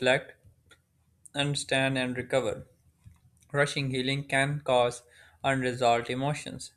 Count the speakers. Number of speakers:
one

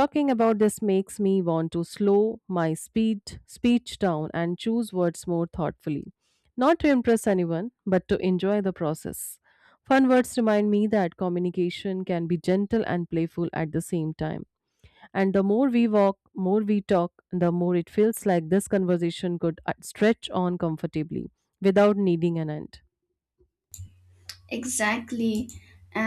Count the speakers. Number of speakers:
two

